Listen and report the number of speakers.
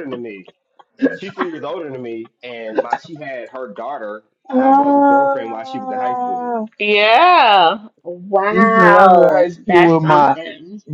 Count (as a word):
three